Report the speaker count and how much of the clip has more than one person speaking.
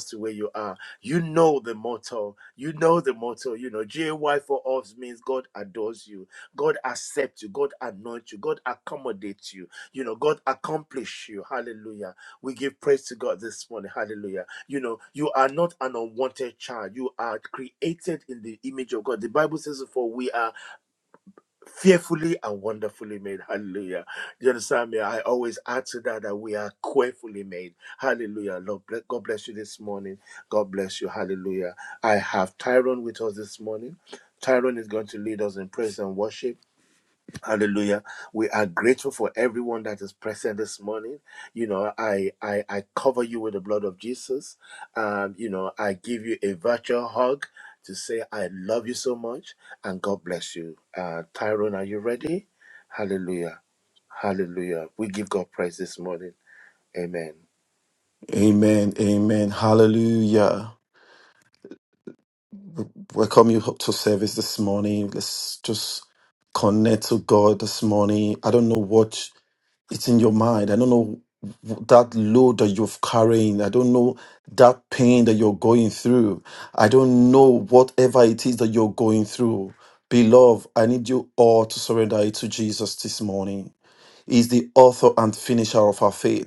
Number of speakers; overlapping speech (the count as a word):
two, no overlap